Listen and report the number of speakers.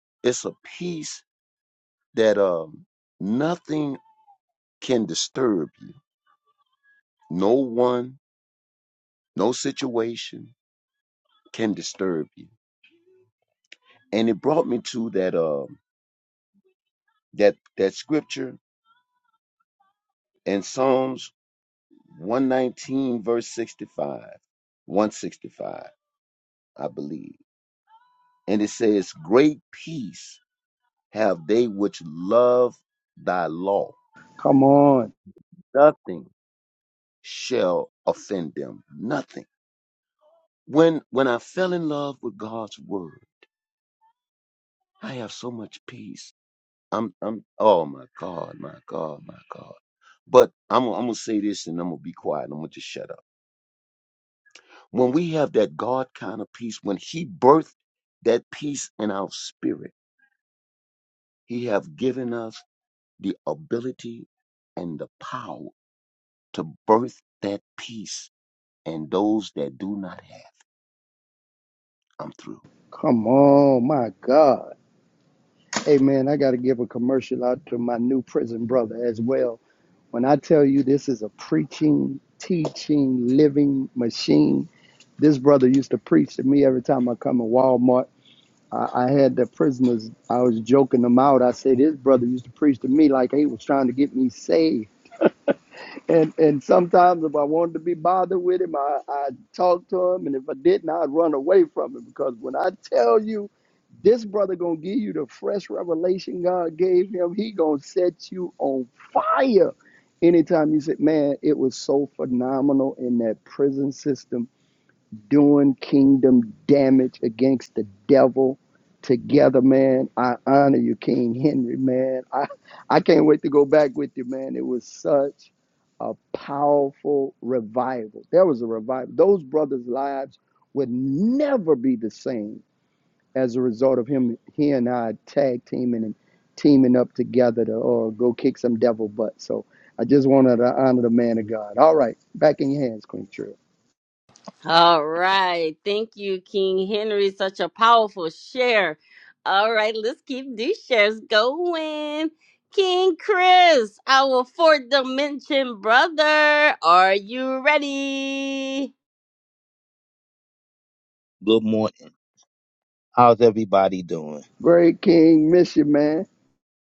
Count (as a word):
four